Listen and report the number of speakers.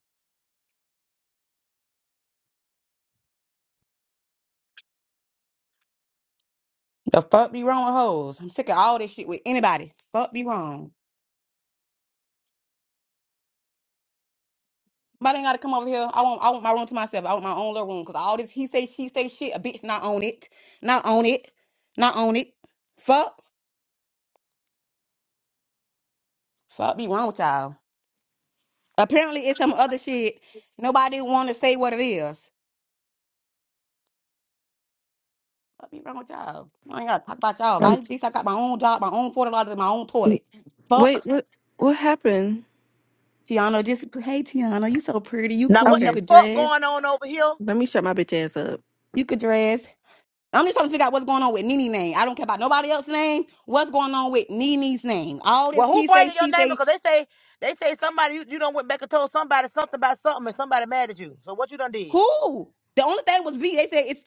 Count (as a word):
three